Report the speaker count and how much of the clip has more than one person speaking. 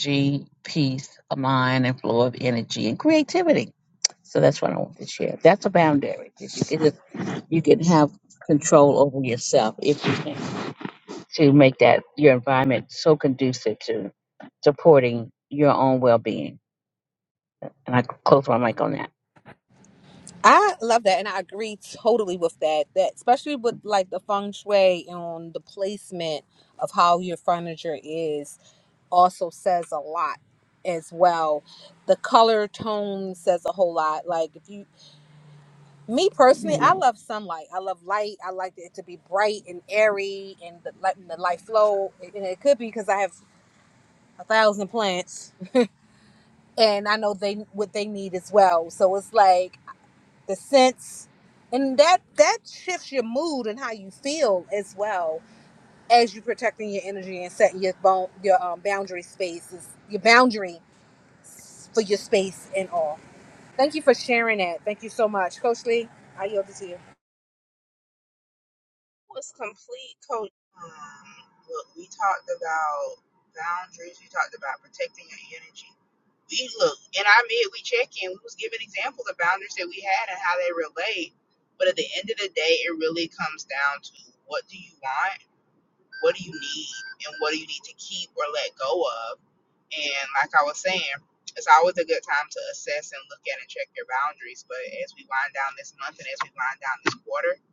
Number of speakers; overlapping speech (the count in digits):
3, no overlap